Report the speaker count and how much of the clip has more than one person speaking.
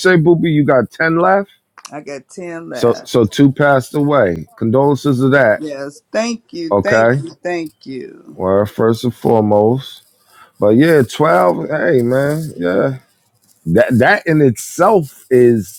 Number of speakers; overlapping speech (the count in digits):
2, about 5%